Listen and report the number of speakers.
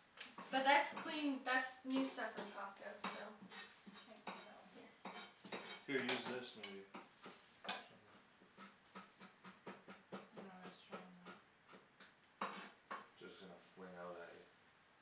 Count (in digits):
3